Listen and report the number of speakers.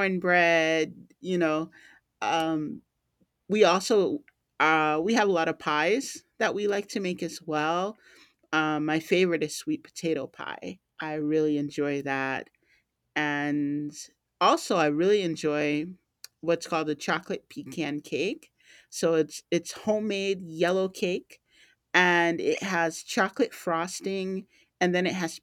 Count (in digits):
1